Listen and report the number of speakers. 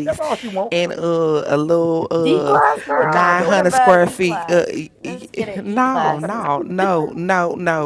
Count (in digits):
3